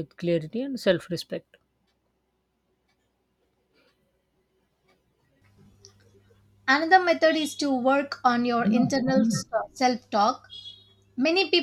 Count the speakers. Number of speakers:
2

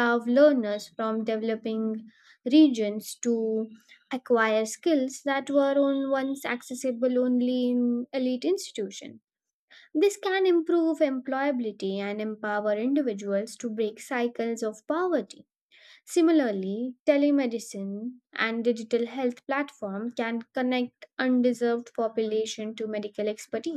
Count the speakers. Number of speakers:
1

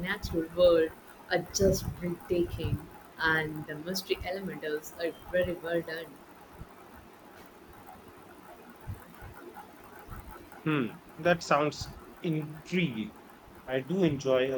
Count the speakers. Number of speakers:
2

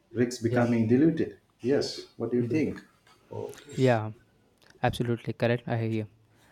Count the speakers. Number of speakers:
2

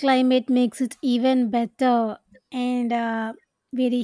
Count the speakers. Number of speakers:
1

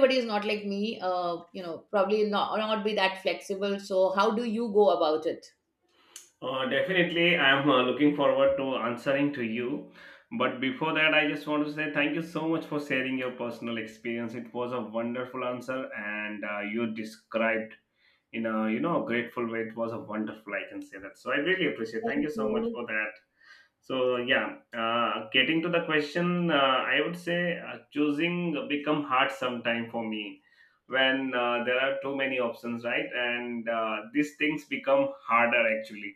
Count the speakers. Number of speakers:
2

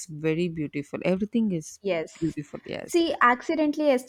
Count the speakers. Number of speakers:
2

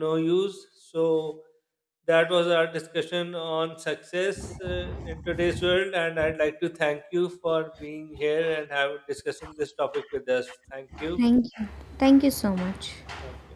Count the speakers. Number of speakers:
2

